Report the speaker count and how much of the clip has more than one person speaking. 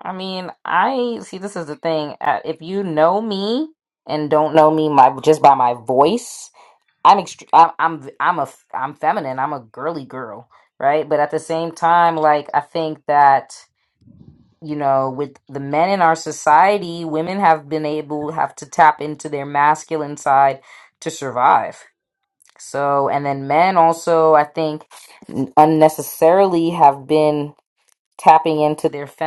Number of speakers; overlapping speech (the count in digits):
1, no overlap